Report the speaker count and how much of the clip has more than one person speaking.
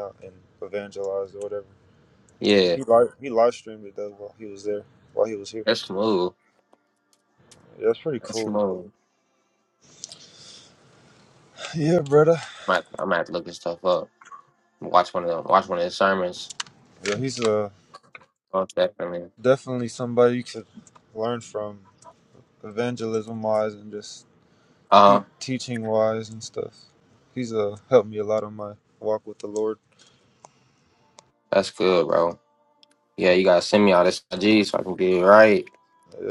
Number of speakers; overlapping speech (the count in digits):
2, about 1%